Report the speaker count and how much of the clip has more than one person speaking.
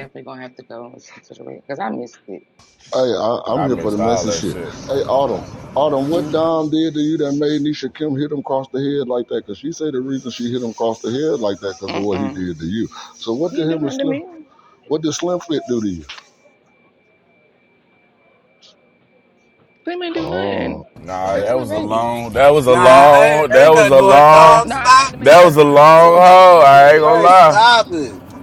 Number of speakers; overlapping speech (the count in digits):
4, about 32%